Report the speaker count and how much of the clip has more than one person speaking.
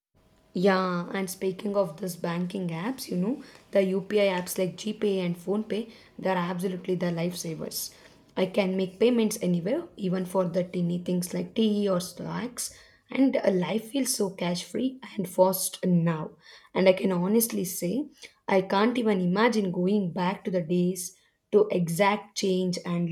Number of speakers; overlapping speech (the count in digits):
1, no overlap